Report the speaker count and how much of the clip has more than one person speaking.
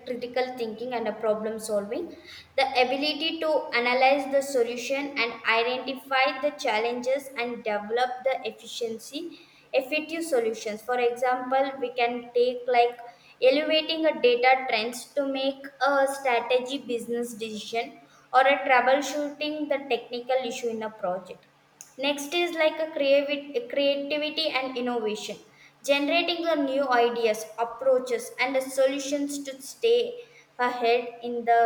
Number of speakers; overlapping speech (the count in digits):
1, no overlap